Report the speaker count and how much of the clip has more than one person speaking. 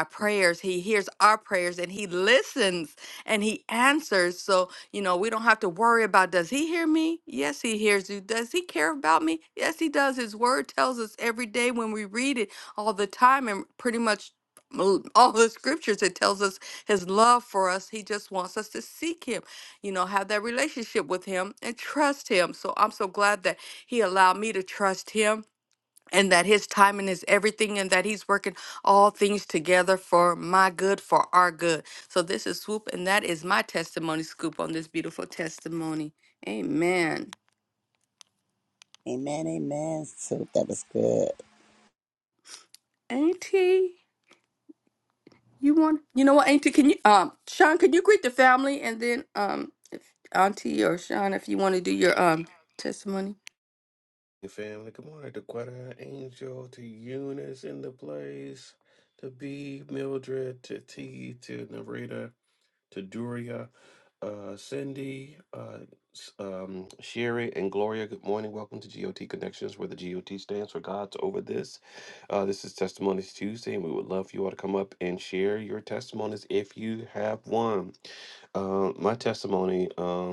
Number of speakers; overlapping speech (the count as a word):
three, no overlap